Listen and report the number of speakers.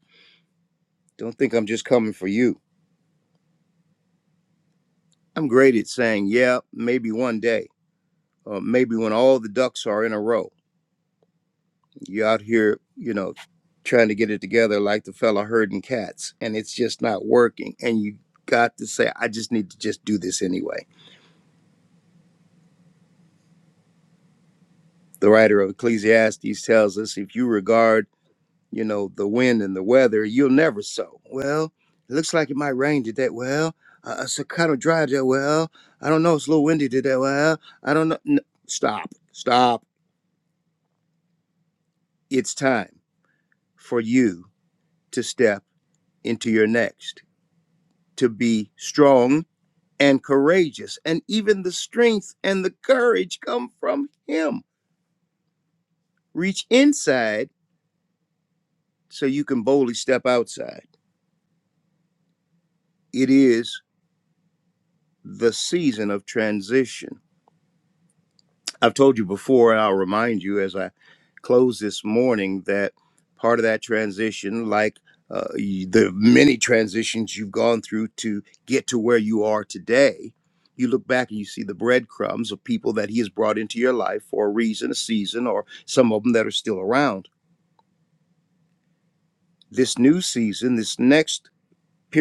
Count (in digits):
1